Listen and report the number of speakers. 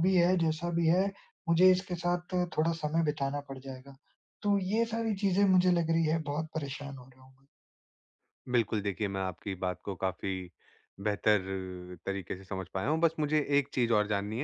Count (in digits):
2